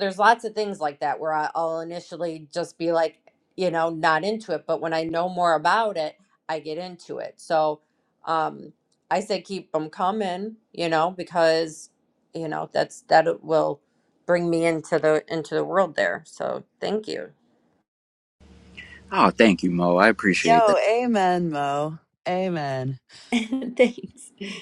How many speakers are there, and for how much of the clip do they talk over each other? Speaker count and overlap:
three, about 1%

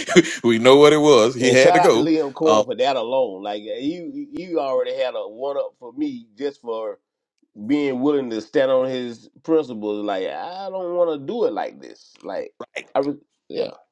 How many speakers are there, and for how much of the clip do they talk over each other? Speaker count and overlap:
two, about 6%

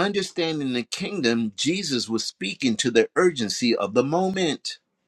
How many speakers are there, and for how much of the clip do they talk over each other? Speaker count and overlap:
one, no overlap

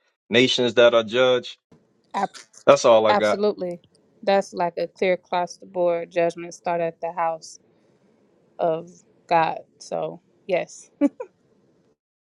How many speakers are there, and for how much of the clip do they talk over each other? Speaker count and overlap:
two, about 3%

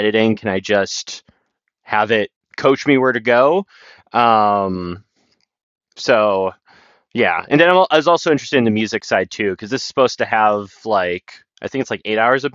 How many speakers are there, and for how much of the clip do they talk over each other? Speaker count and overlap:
one, no overlap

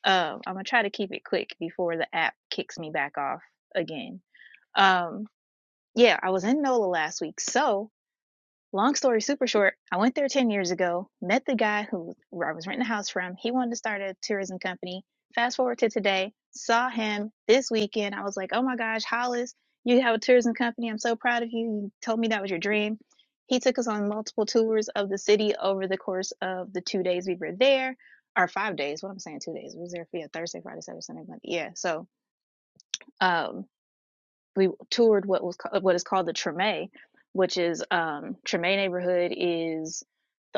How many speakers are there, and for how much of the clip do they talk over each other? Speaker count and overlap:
one, no overlap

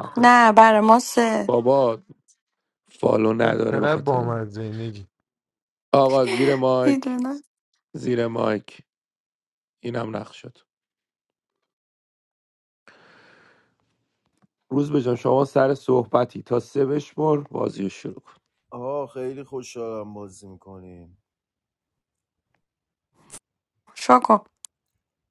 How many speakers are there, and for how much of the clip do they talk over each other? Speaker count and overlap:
four, about 5%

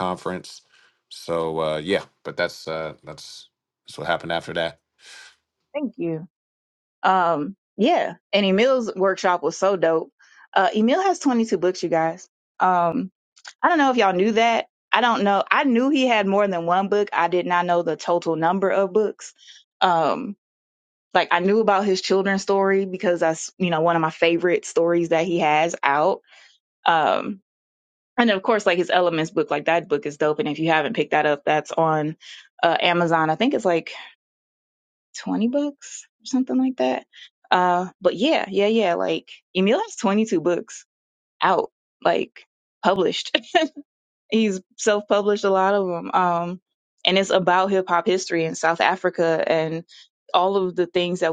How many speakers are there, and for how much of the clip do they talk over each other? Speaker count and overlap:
two, no overlap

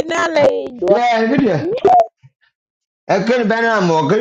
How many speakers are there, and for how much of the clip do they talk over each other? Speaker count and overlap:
two, about 2%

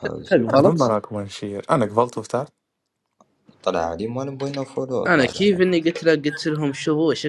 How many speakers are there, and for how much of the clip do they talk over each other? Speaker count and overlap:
three, about 15%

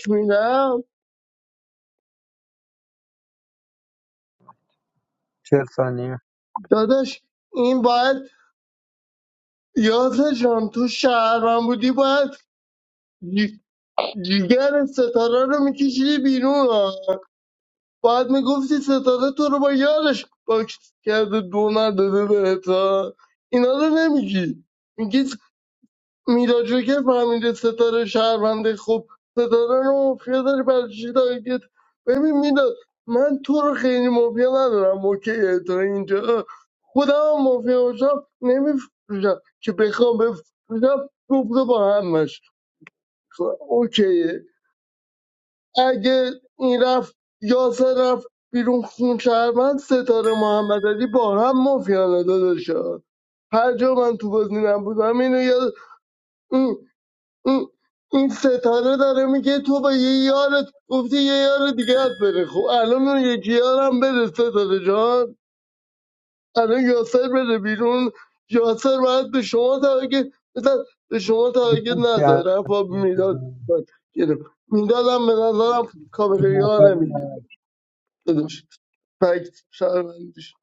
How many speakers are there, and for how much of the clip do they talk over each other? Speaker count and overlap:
two, about 2%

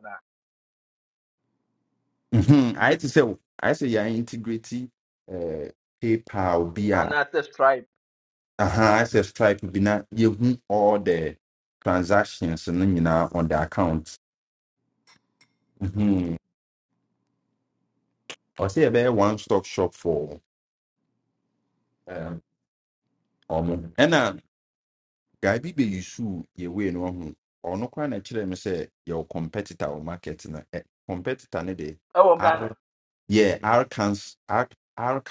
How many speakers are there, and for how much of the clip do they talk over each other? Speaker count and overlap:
two, about 2%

